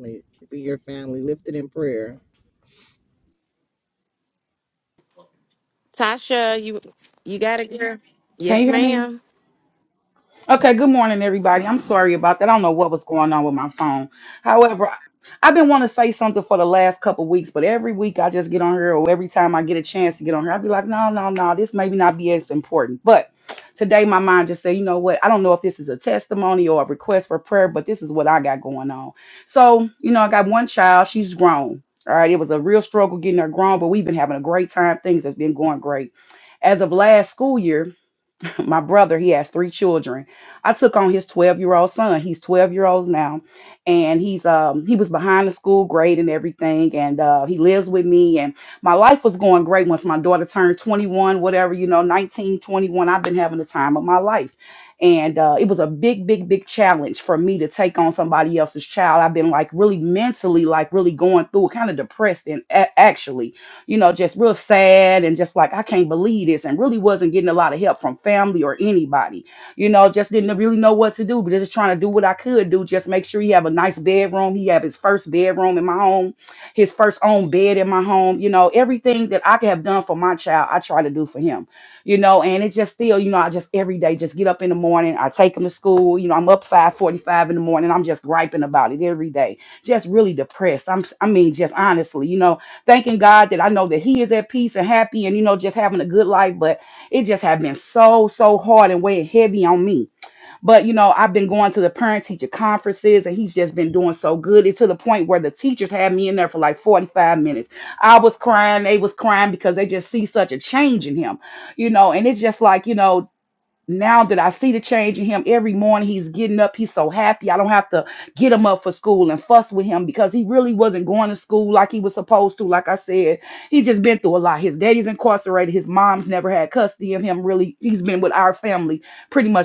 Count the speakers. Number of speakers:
3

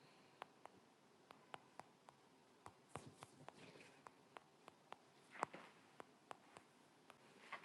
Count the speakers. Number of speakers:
0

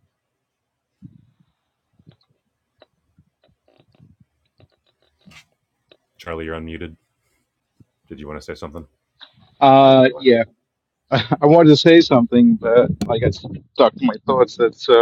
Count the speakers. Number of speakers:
2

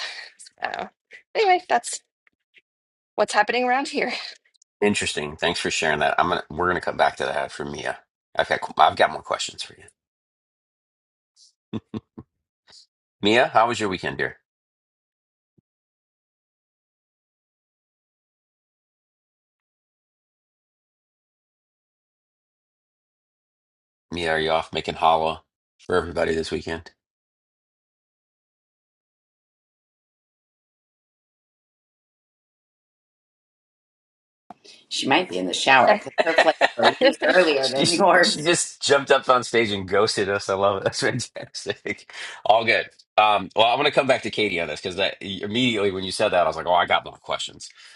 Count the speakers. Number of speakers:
3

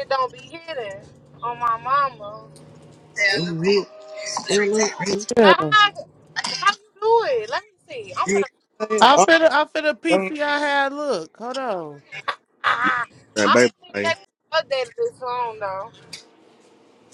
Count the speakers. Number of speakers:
3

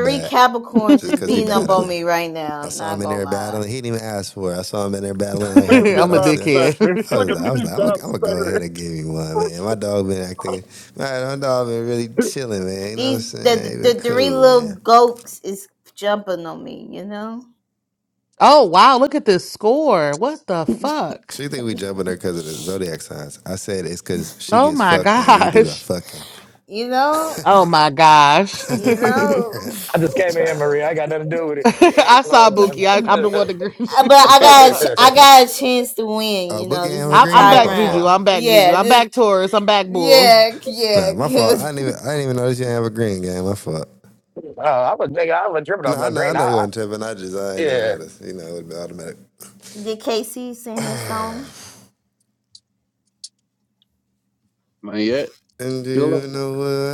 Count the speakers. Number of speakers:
5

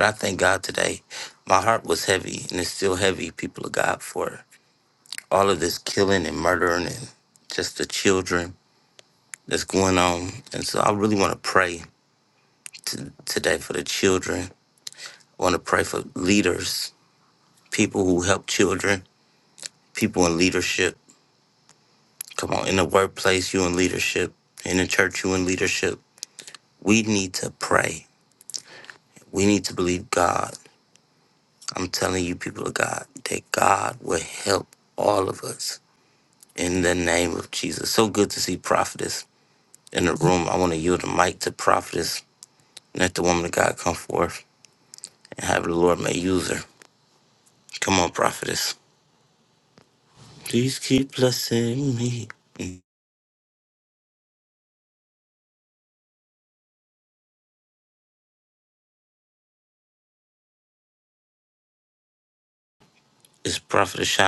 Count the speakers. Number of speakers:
1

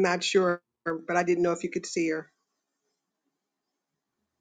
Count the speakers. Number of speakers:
1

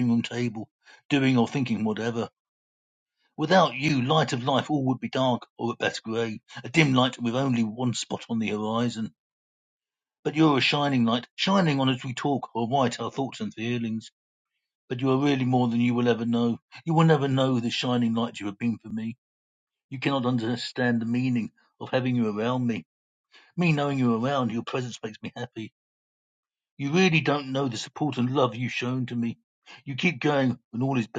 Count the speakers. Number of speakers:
1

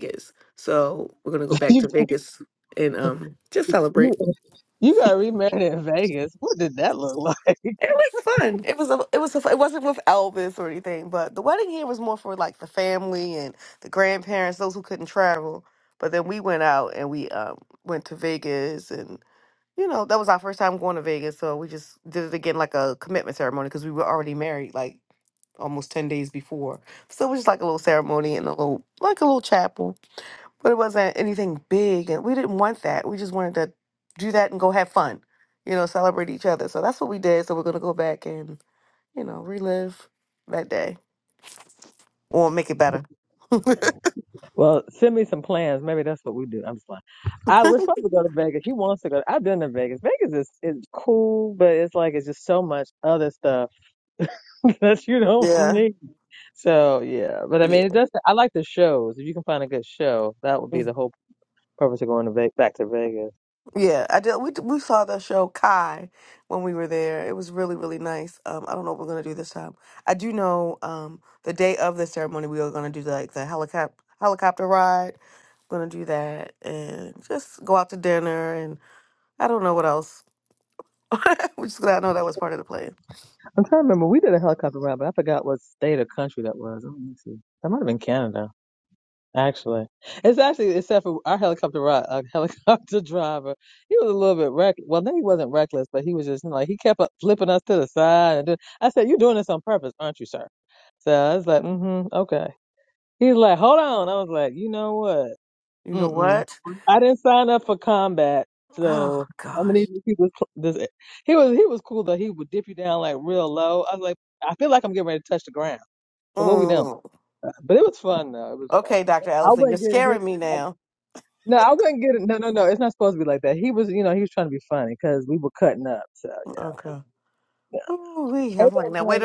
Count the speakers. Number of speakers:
2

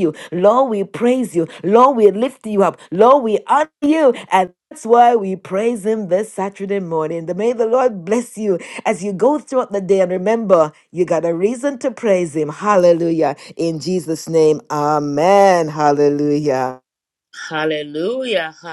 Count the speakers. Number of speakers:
2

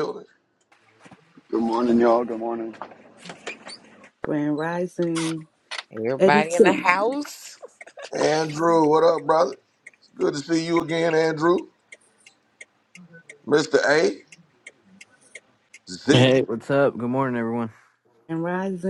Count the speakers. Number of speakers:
5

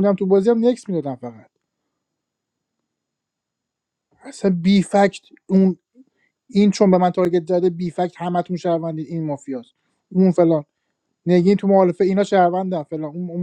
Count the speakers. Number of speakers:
1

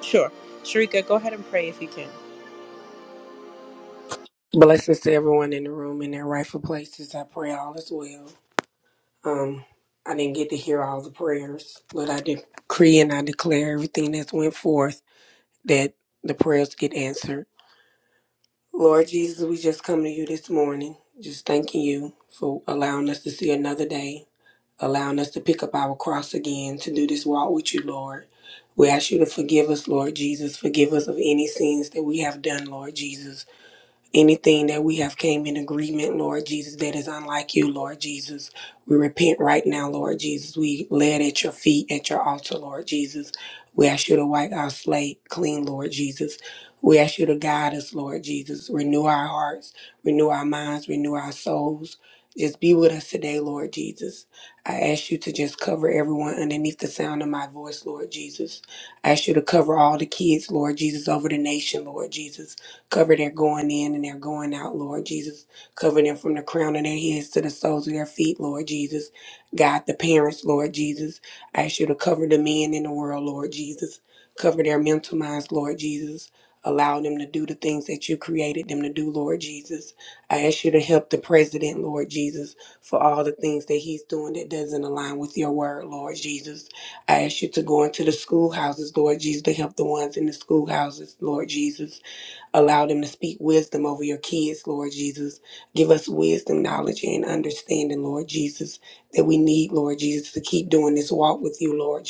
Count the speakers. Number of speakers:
2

